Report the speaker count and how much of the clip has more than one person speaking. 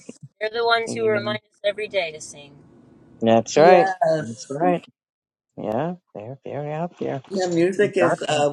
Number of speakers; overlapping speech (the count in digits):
3, about 18%